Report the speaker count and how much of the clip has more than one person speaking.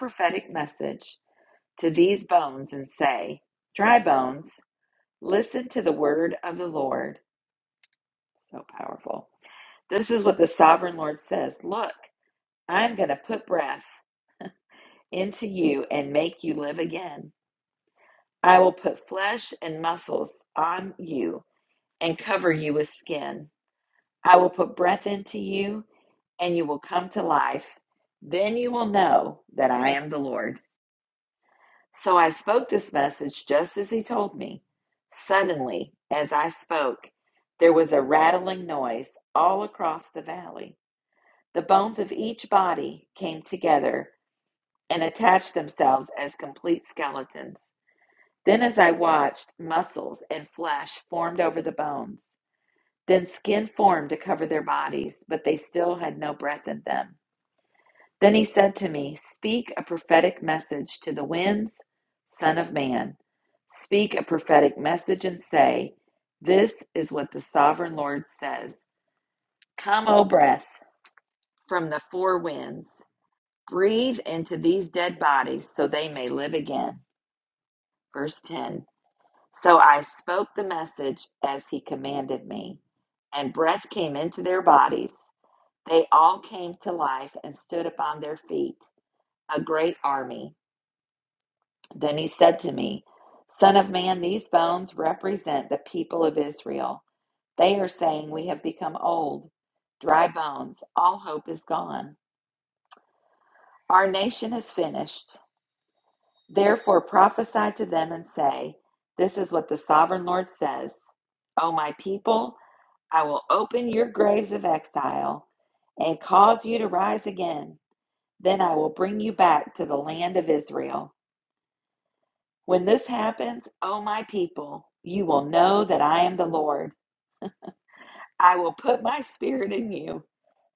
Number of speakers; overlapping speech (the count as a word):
one, no overlap